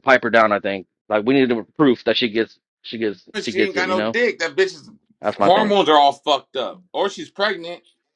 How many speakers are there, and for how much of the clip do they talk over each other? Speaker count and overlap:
2, about 12%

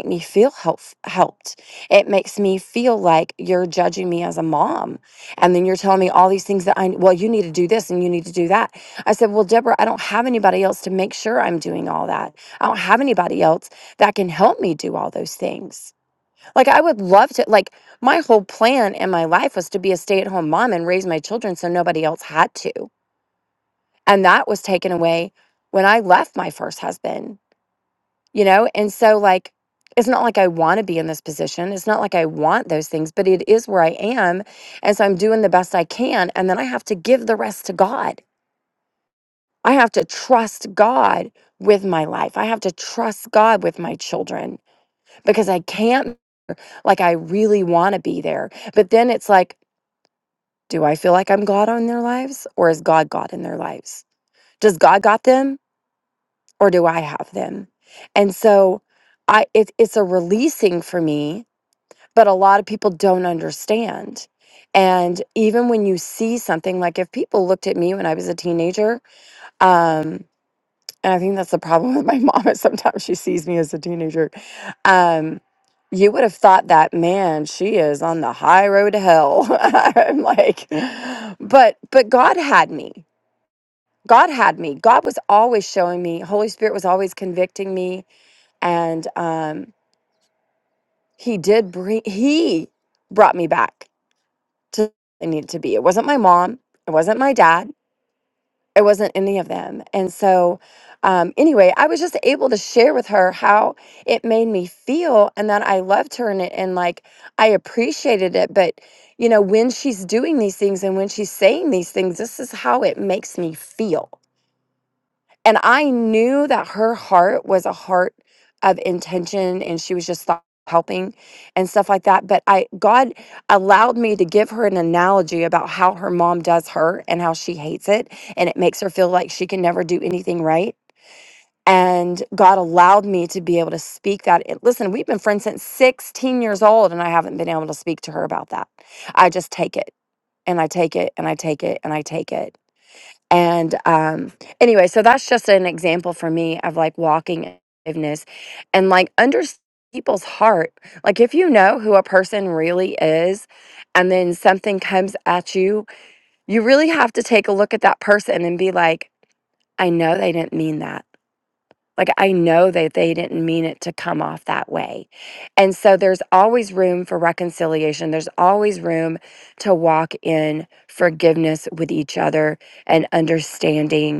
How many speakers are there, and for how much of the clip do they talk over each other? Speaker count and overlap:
1, no overlap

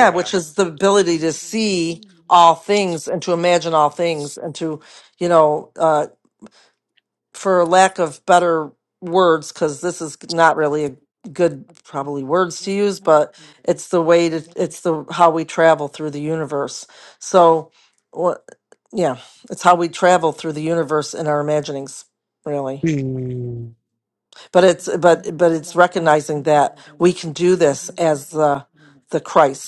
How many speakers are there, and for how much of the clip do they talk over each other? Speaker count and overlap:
2, about 1%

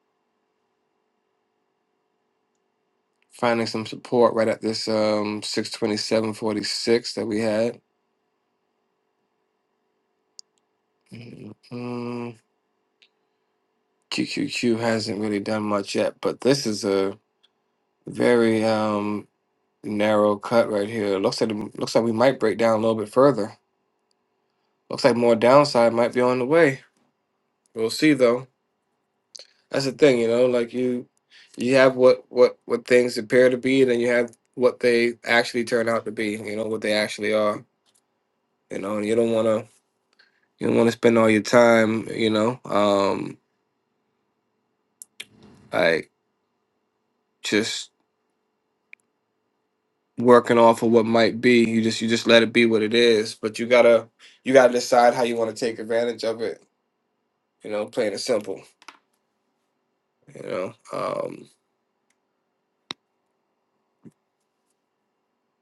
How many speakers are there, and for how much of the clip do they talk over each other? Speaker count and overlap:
1, no overlap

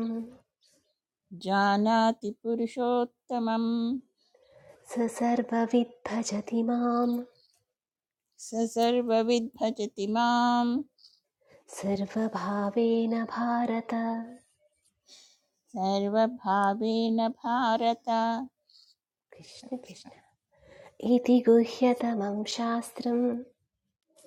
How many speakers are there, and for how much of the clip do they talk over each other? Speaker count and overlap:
2, no overlap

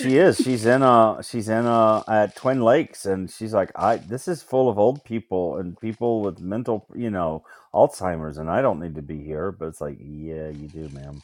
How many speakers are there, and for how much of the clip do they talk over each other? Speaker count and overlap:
1, no overlap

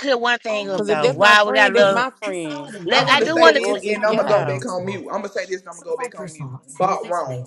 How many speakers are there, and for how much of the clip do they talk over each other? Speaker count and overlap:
3, about 40%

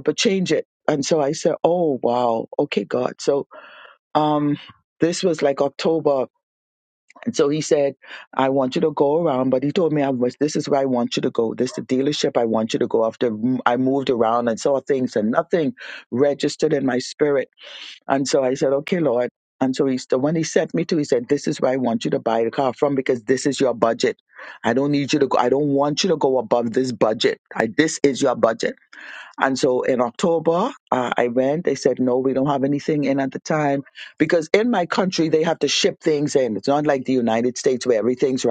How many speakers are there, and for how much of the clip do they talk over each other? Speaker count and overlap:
1, no overlap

